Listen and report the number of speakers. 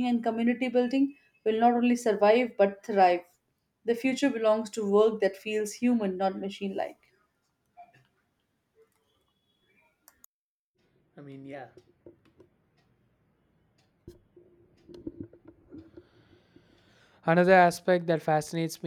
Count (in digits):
2